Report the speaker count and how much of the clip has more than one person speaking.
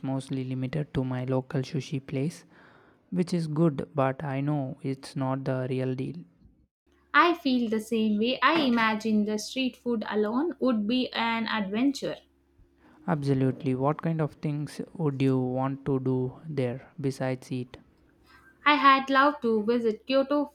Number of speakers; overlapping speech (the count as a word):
two, no overlap